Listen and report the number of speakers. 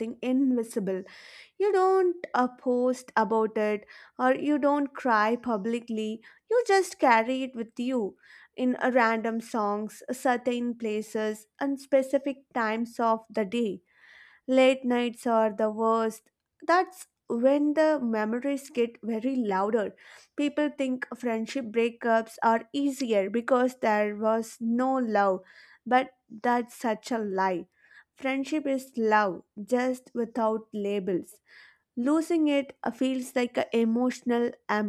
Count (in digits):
1